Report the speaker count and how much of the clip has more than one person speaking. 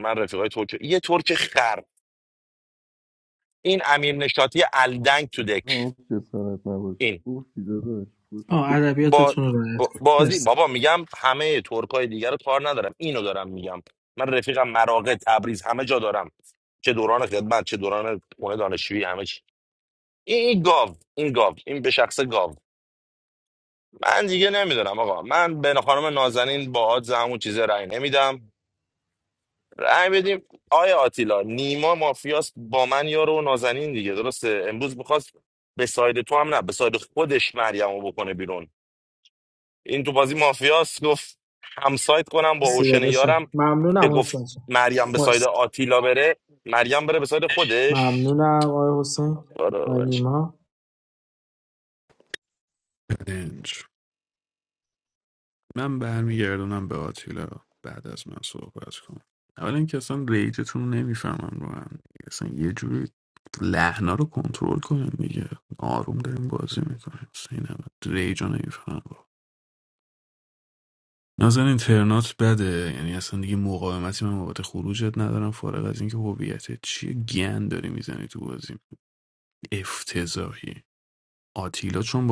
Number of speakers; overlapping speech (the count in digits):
4, about 4%